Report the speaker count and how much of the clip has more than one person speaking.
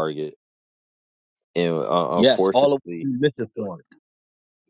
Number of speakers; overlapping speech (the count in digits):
2, about 19%